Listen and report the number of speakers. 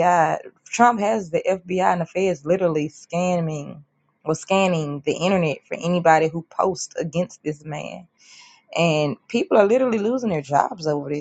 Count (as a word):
one